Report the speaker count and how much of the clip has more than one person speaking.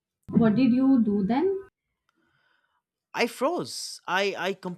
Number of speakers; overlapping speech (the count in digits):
2, no overlap